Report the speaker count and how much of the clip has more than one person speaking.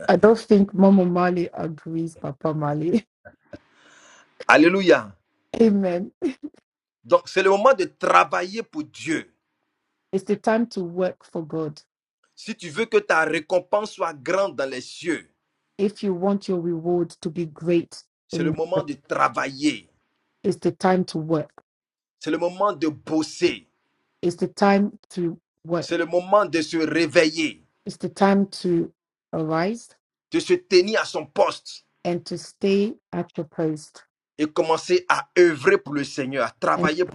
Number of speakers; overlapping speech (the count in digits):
2, about 1%